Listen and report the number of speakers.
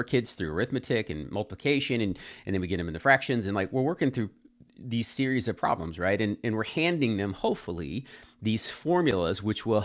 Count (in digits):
1